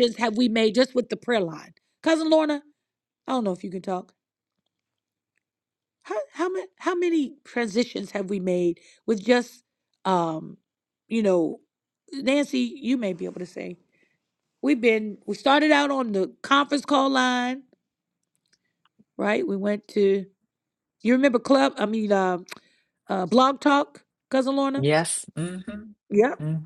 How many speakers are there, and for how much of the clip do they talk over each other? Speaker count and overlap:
2, under 1%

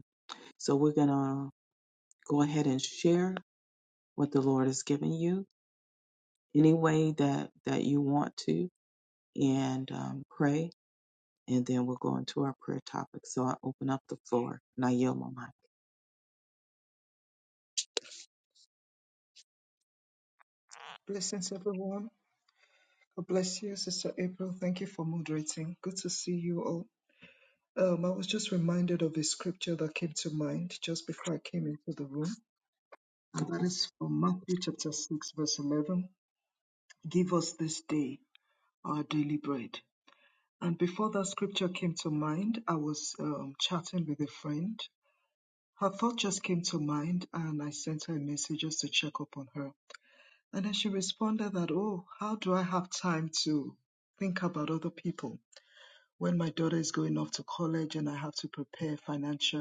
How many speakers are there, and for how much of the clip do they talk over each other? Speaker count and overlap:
2, no overlap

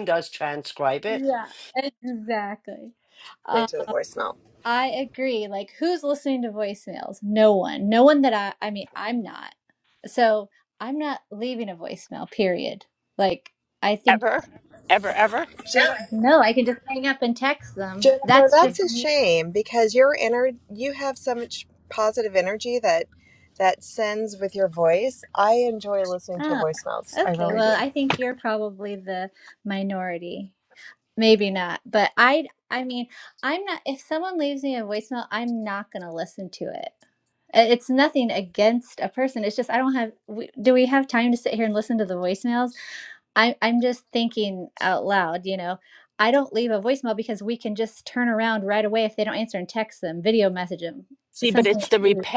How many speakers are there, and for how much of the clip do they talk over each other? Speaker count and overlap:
4, about 5%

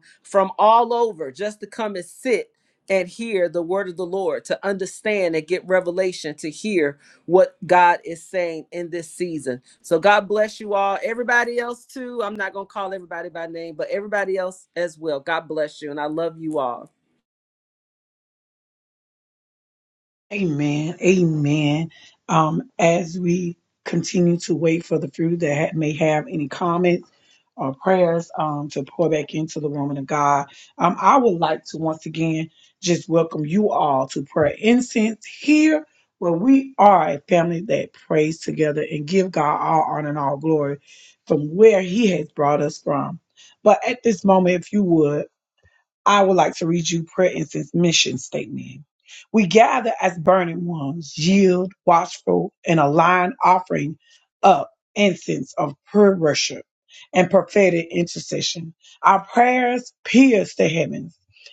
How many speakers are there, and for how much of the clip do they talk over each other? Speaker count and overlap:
2, no overlap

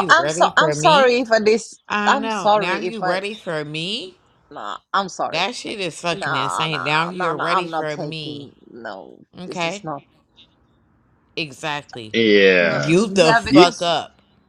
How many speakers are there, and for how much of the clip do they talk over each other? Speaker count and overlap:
3, about 42%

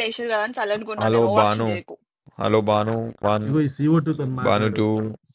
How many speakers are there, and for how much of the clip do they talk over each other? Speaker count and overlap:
3, about 23%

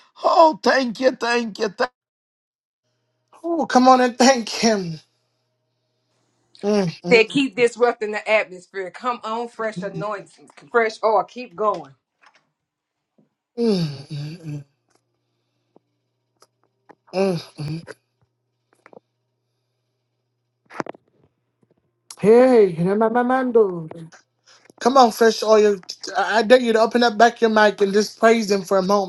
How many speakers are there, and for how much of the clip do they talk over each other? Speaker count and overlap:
3, about 1%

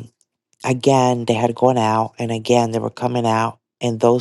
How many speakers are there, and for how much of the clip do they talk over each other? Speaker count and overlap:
1, no overlap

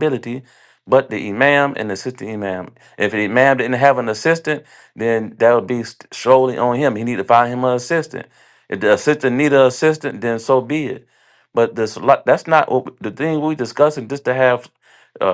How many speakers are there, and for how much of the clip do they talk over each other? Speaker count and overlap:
1, no overlap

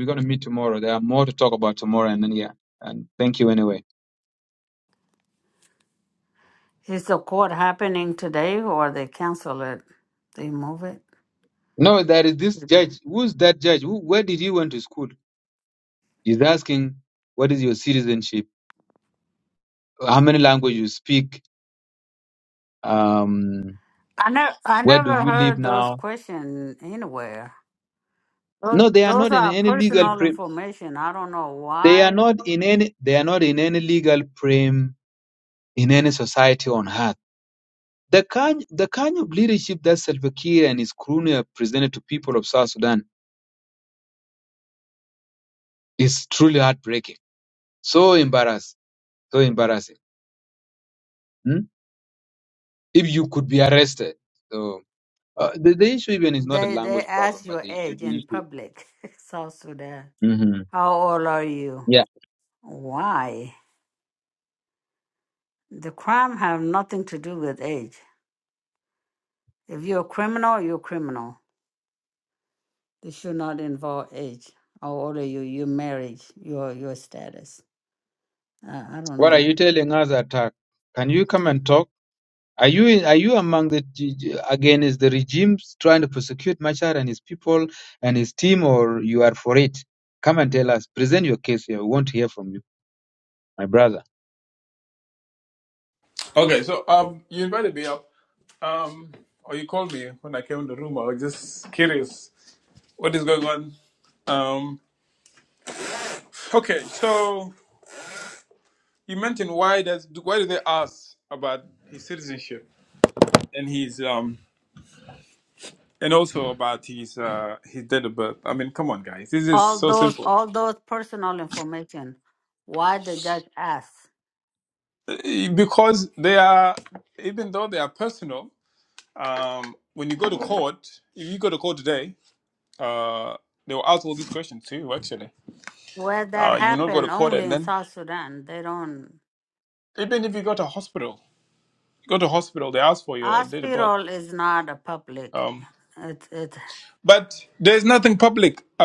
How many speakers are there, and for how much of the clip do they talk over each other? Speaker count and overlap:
3, about 5%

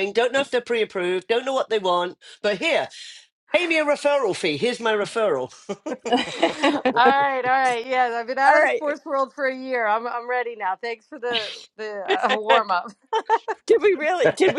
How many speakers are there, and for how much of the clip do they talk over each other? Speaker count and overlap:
3, about 3%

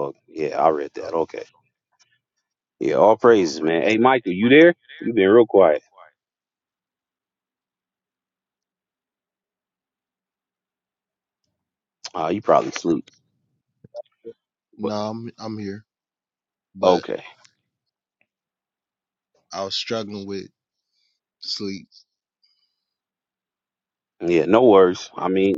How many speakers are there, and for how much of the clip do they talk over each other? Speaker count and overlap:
2, about 1%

